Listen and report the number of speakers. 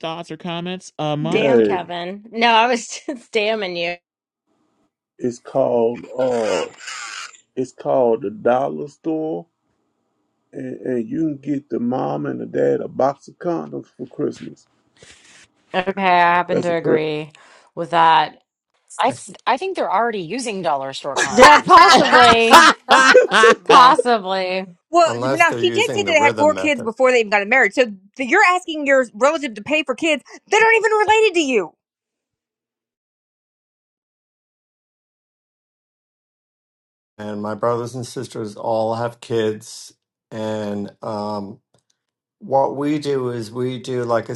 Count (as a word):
six